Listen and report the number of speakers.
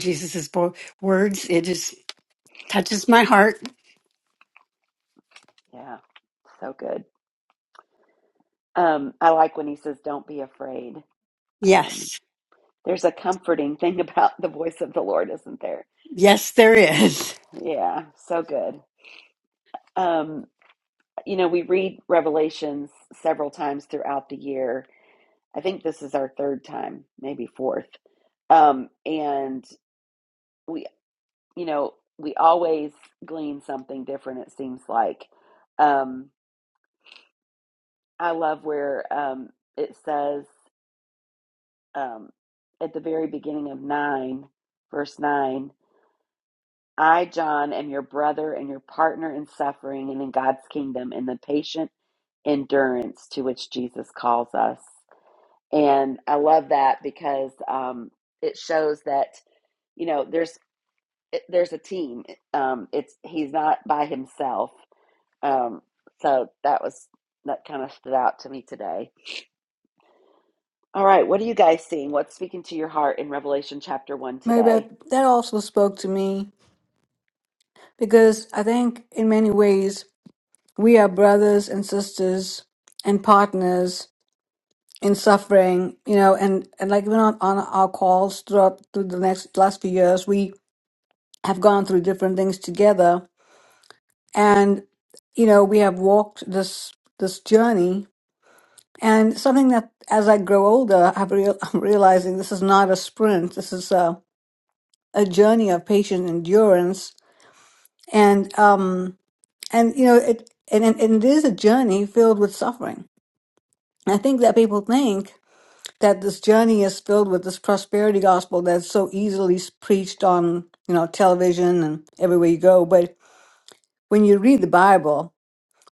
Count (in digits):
3